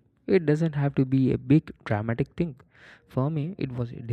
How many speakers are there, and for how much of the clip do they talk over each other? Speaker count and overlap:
one, no overlap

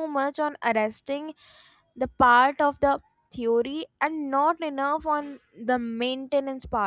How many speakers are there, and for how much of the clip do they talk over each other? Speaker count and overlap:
one, no overlap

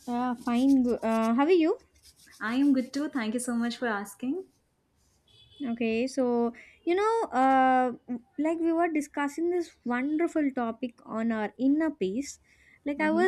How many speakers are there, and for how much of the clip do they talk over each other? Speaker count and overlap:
two, about 2%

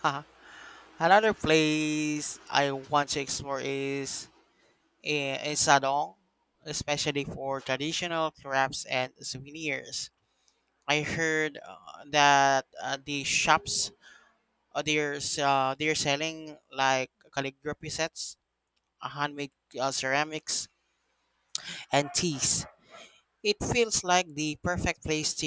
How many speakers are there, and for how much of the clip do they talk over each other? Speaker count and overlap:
one, no overlap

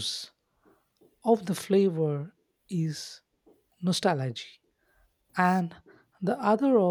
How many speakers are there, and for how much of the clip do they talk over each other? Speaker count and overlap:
one, no overlap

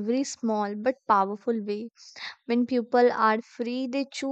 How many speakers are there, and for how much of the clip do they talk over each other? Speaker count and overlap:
one, no overlap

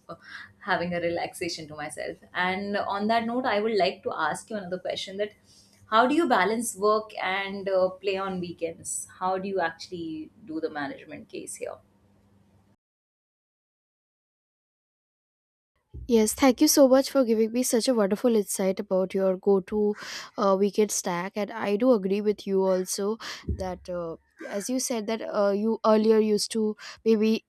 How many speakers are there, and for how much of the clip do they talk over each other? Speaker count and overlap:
two, no overlap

